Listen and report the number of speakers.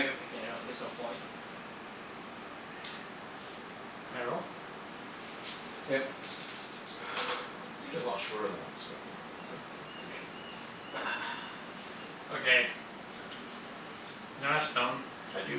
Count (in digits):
3